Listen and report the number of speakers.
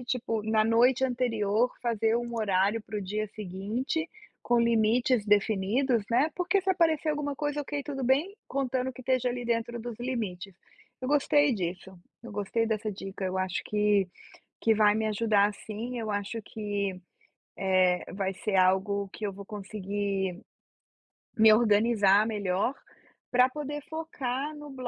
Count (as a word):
one